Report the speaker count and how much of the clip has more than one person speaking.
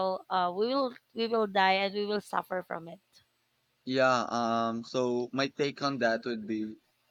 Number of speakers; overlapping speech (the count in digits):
2, no overlap